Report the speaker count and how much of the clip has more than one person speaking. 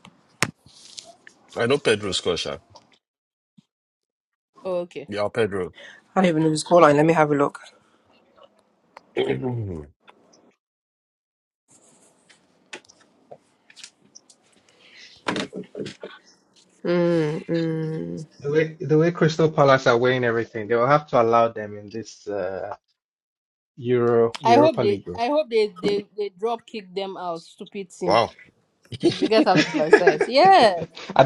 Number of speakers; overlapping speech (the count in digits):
4, about 3%